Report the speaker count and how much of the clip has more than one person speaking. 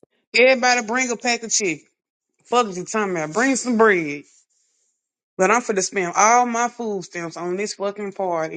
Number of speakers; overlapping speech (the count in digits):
1, no overlap